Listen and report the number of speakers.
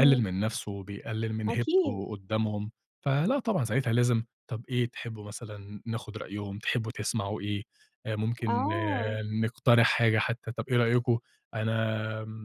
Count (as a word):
two